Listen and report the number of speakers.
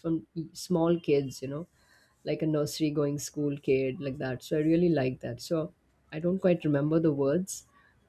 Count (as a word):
one